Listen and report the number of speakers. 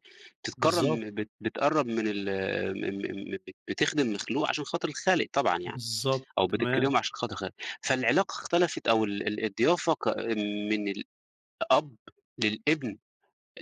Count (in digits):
2